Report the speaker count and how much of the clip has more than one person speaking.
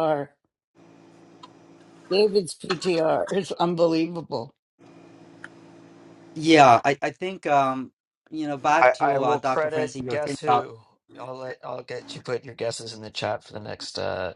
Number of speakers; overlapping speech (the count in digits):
3, about 13%